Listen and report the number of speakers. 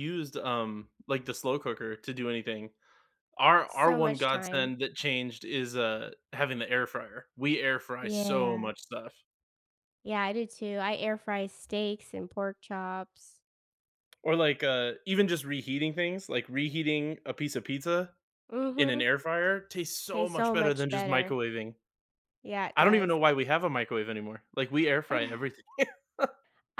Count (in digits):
2